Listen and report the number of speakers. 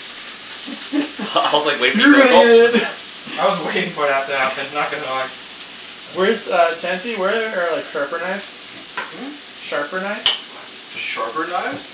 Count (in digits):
4